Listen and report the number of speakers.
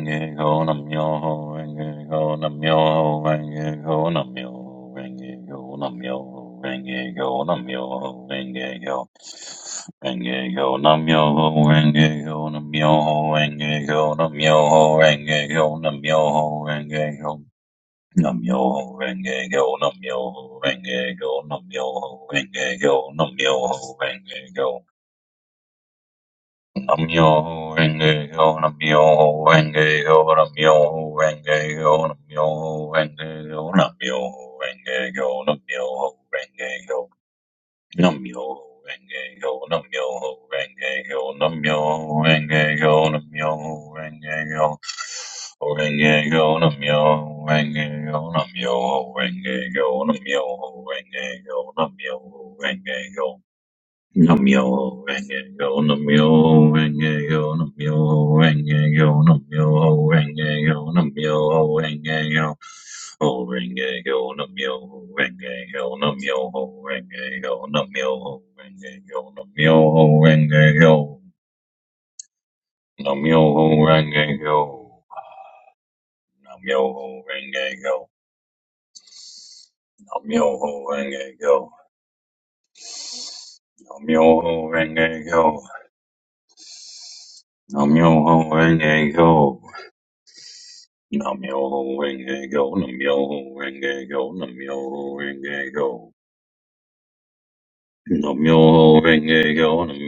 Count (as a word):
one